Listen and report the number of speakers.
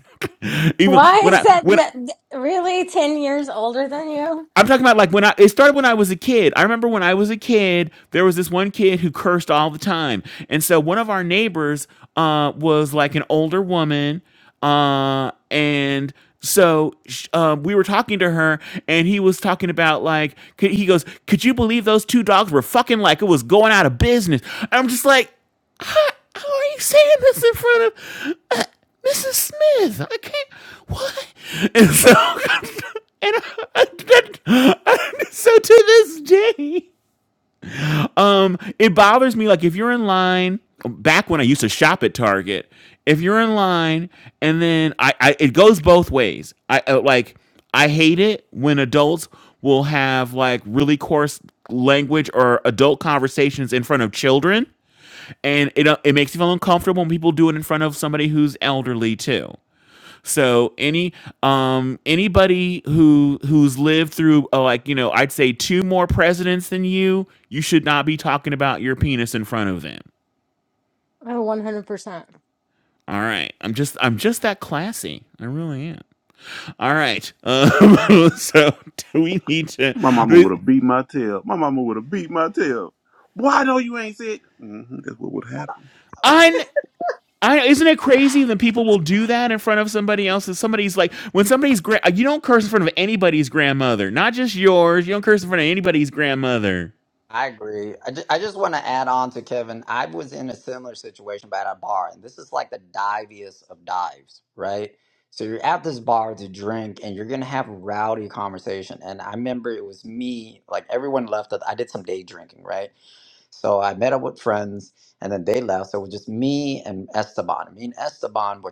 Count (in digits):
4